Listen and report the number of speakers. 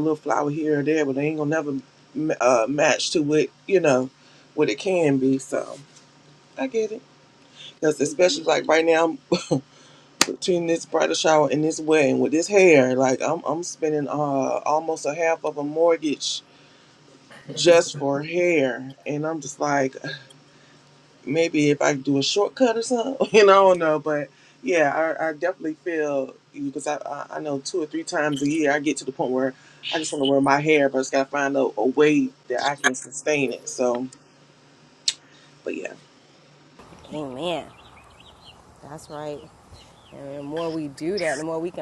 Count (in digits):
2